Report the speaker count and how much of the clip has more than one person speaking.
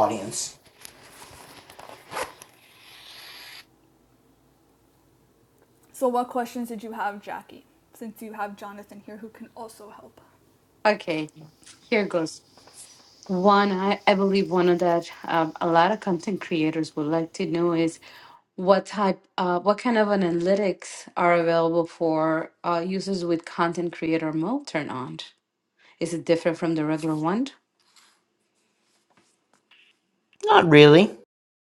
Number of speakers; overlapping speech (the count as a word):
three, no overlap